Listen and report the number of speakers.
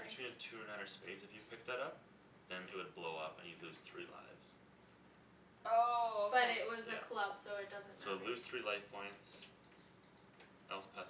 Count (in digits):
3